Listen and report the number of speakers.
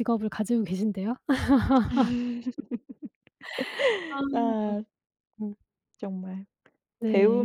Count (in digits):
2